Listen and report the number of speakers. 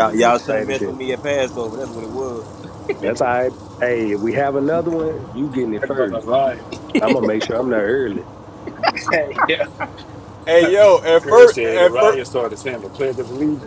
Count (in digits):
4